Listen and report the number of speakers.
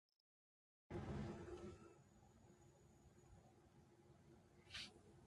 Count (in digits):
0